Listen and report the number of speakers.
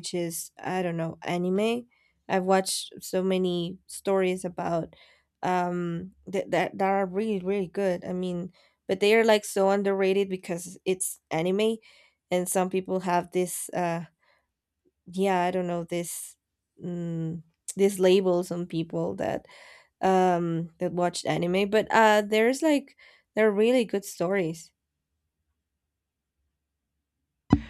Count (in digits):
1